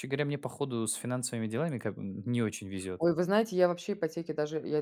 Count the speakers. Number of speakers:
2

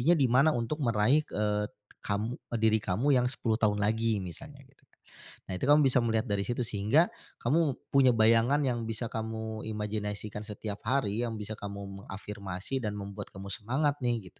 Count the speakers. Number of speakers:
1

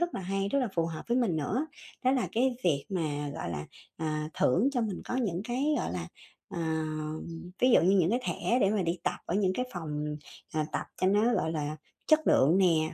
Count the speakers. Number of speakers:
1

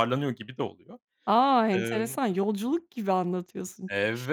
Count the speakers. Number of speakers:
2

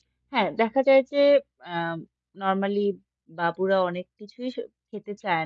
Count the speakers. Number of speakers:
1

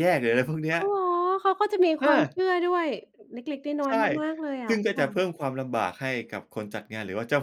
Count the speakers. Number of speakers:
2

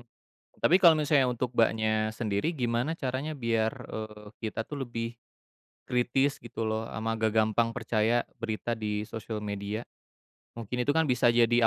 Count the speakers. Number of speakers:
1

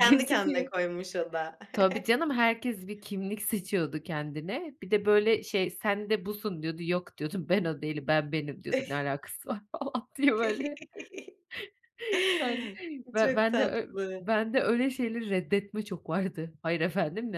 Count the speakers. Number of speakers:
2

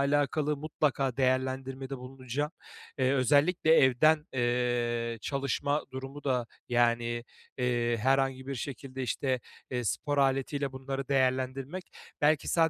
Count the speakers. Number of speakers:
1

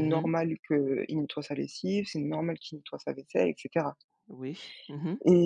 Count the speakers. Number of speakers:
2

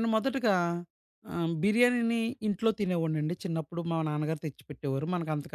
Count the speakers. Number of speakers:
1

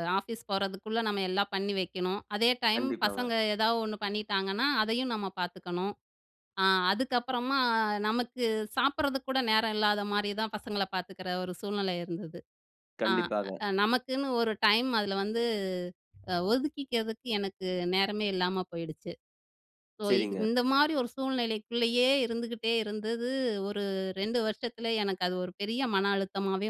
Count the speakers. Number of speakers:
2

